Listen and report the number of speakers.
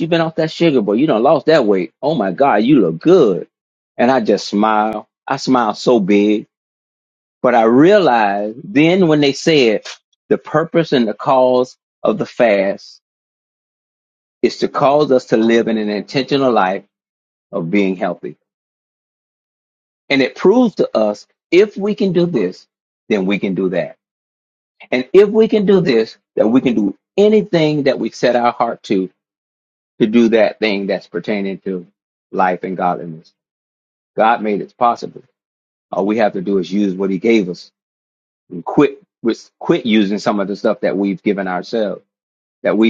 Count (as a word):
one